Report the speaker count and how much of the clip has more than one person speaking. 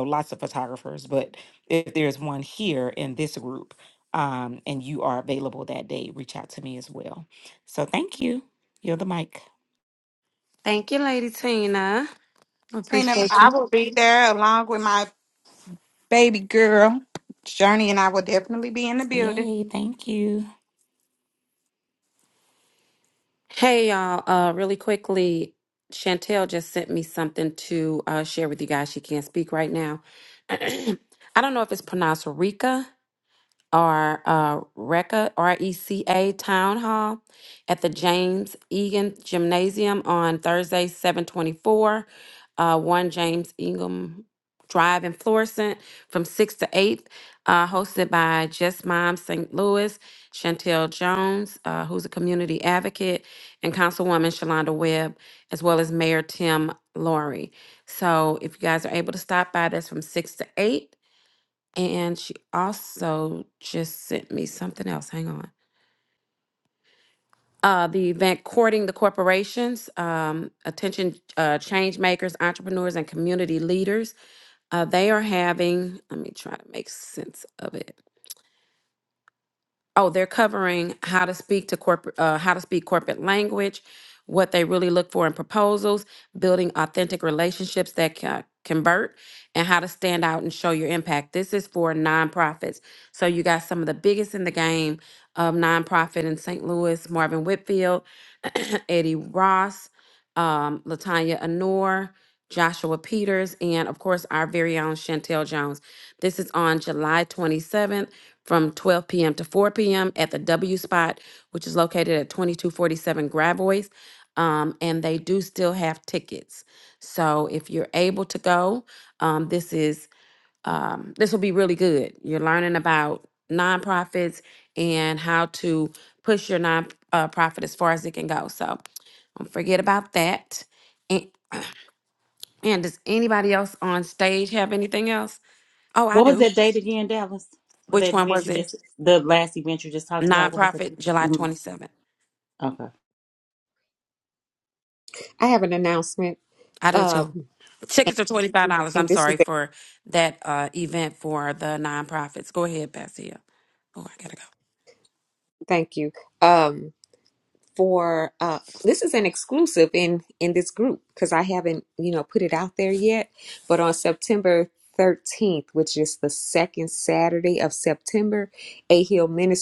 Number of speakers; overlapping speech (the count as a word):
five, about 2%